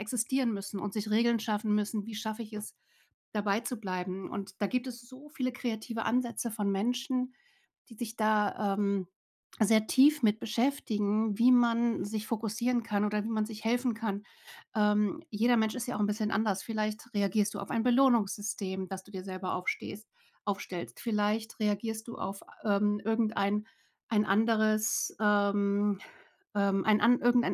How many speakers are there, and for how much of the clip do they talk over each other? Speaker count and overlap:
1, no overlap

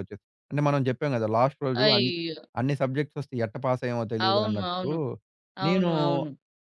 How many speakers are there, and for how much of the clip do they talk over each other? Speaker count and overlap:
2, about 21%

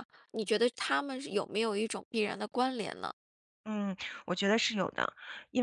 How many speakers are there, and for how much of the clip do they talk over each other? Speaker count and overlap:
2, no overlap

